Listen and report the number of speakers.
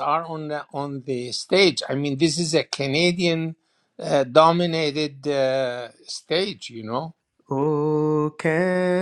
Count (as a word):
two